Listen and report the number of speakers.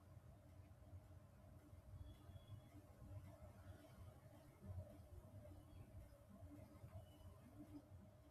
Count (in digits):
0